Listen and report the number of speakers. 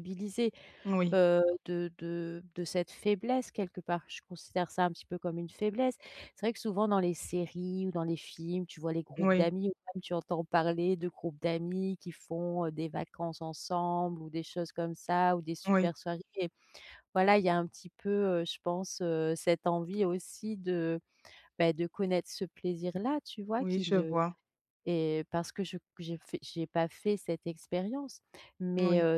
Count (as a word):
two